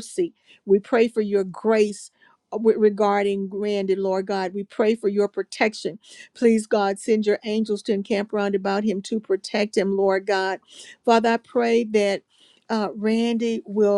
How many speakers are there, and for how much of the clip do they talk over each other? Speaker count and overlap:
1, no overlap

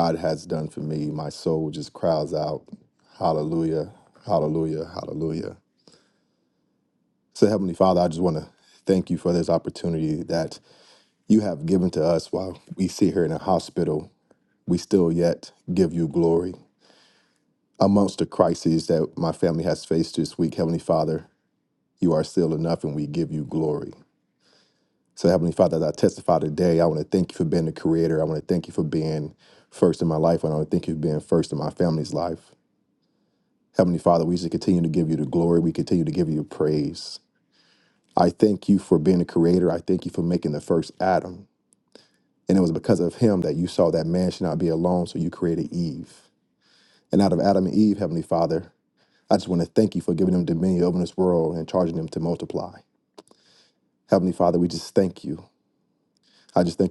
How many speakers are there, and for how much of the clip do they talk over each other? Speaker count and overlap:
1, no overlap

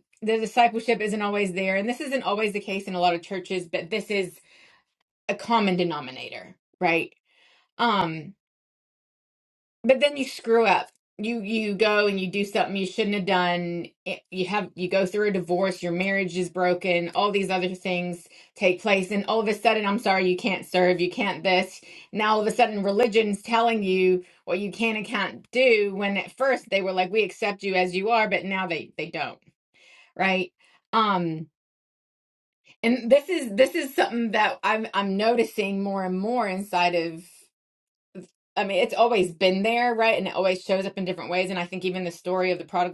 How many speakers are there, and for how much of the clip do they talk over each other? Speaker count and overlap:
1, no overlap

